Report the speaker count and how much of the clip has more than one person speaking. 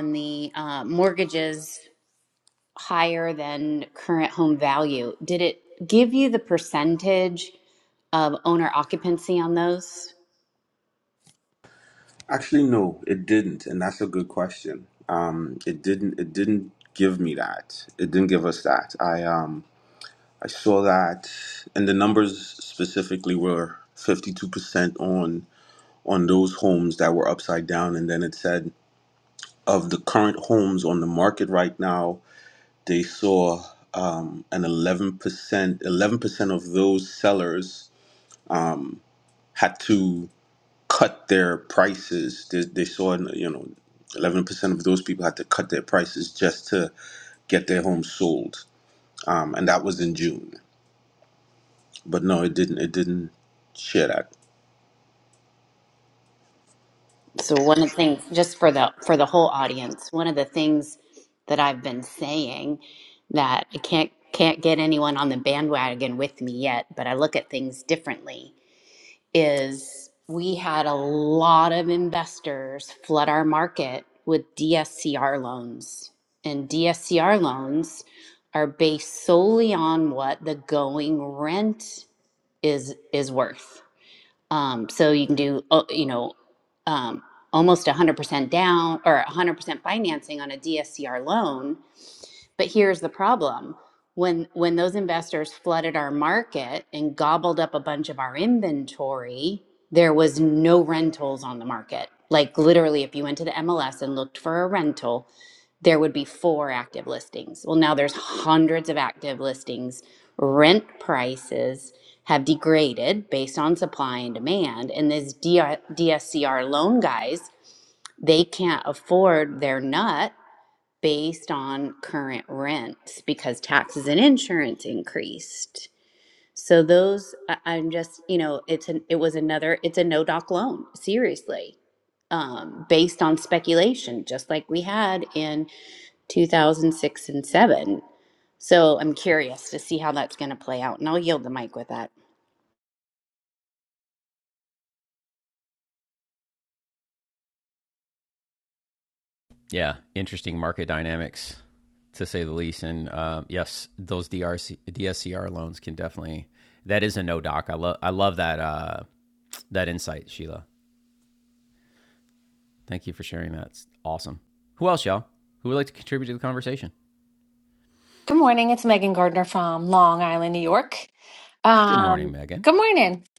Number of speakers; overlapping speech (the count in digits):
4, under 1%